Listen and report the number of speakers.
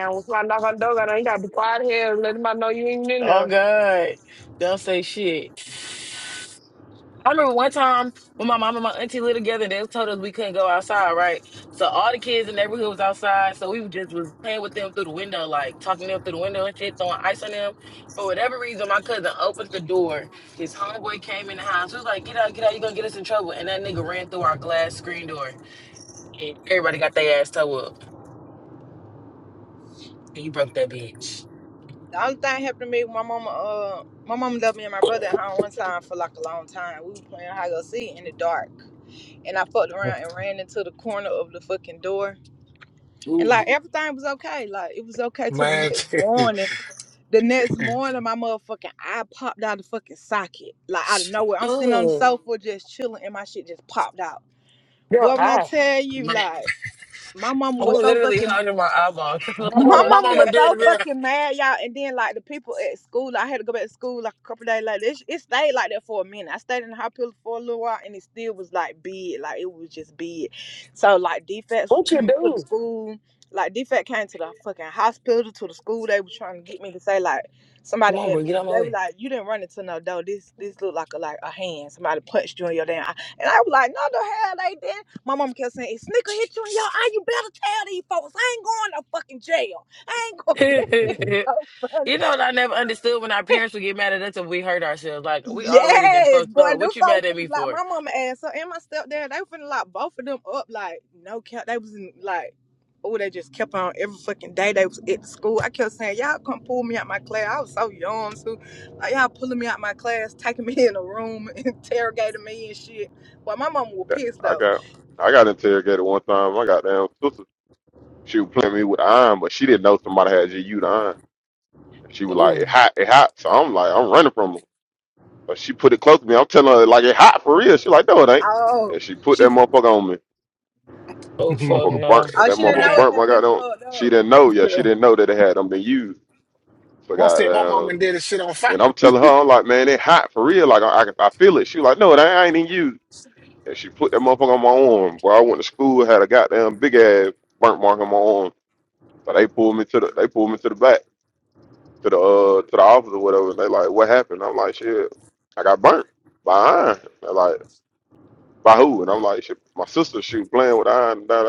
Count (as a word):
five